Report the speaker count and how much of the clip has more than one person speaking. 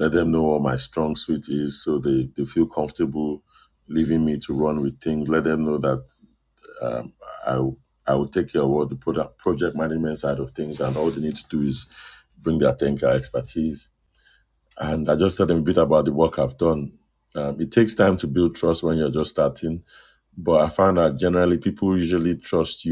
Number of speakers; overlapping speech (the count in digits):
1, no overlap